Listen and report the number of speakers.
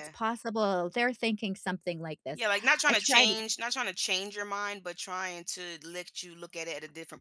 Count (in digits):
2